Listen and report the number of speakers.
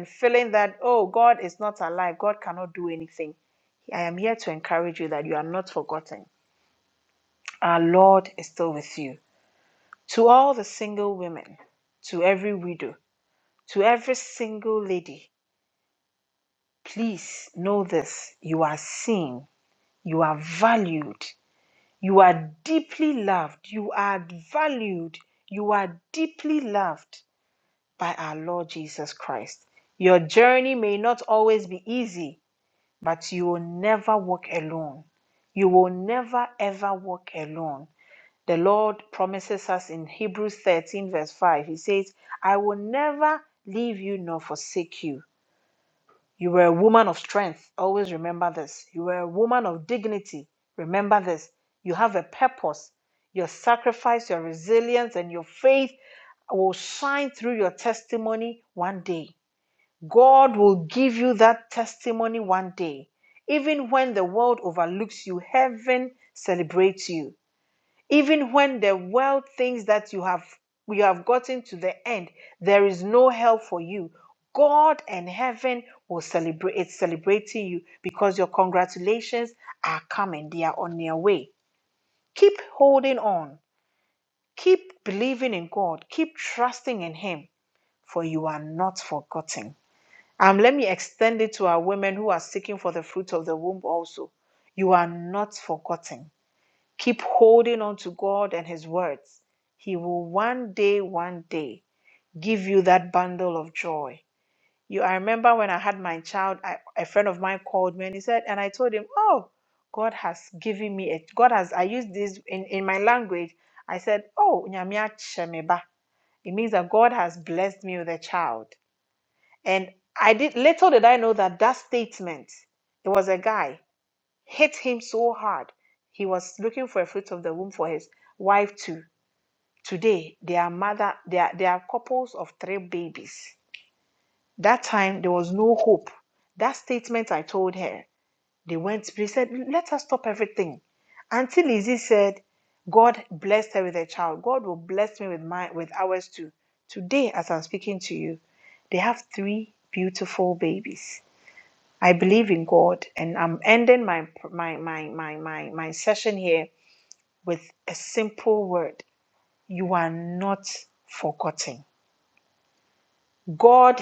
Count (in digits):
1